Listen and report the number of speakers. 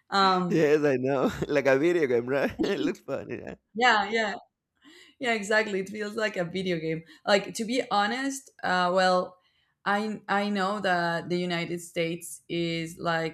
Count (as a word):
two